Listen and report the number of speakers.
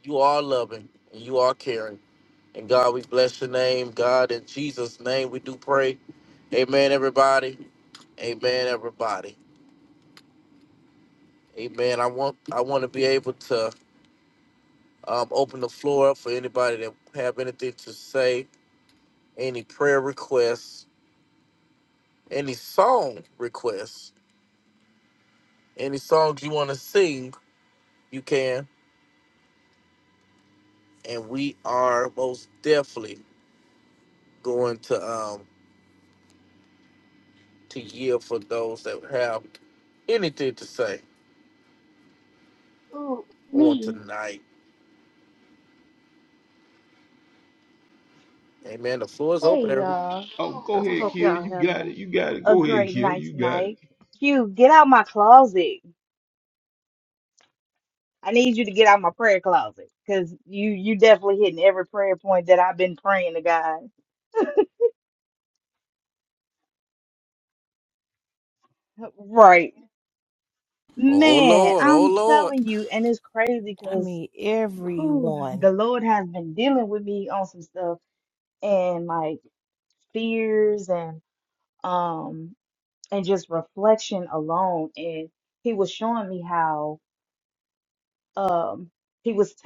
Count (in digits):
4